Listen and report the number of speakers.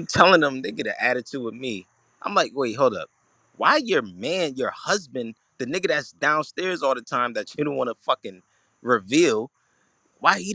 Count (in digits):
1